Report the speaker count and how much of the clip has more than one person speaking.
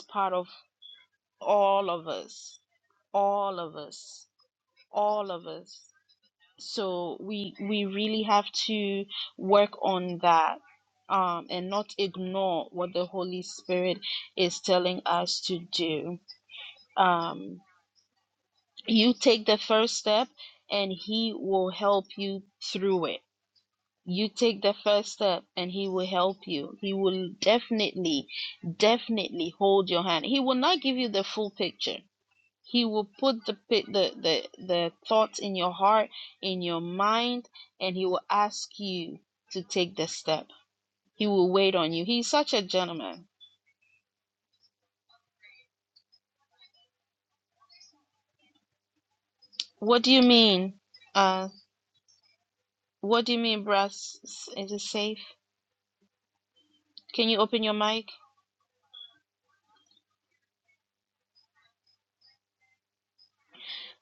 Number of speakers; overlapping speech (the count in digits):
1, no overlap